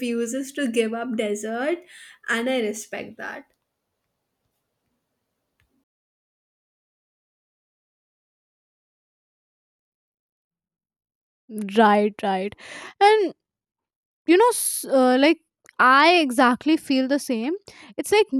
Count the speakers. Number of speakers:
two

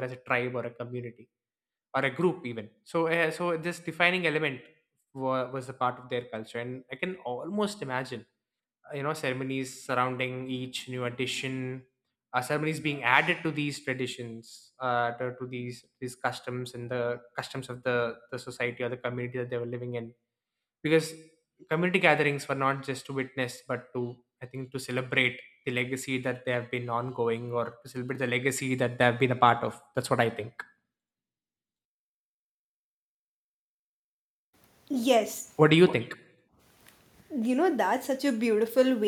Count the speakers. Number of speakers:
two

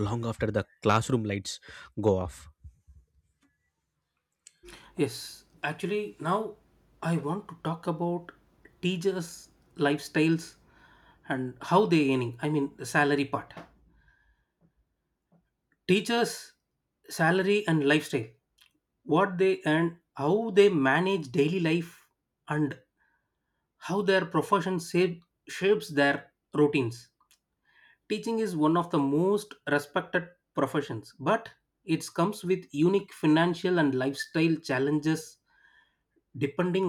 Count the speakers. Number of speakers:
two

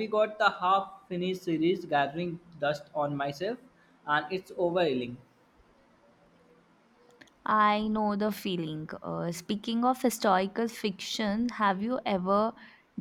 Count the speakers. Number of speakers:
two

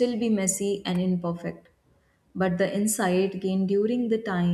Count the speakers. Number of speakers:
one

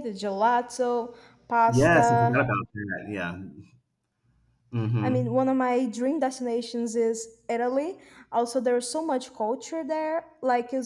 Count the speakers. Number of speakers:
two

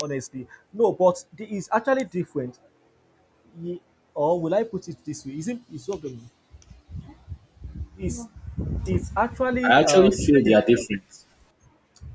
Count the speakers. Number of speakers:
two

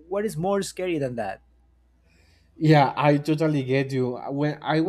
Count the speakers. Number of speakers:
two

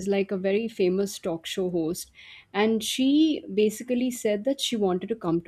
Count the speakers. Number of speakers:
one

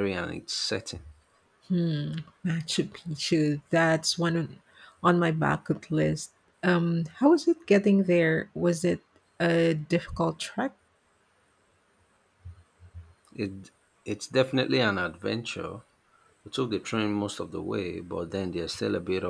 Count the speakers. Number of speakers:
two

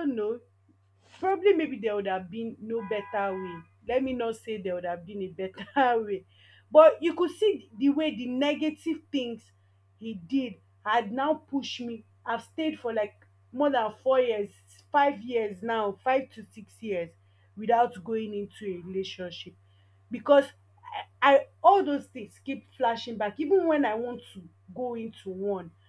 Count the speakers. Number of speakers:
one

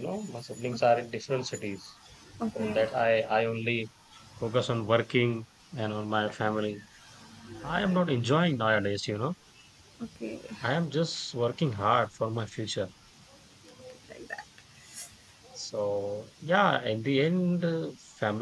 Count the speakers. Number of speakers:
two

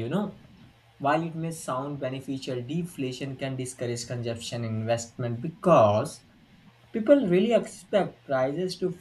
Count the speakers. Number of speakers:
one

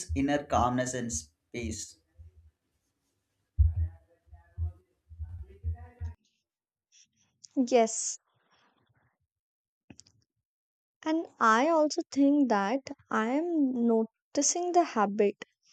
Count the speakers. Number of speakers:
two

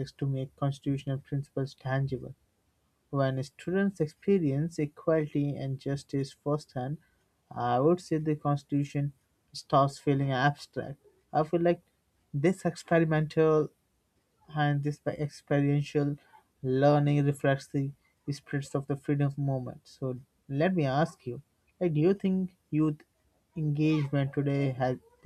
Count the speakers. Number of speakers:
one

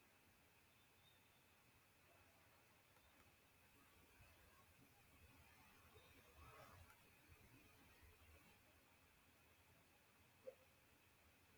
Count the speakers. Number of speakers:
zero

